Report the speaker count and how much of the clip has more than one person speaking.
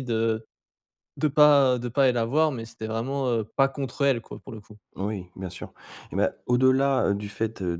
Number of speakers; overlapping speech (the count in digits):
2, no overlap